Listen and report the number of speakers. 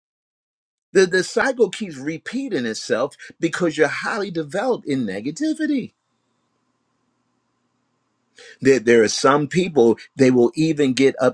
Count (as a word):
one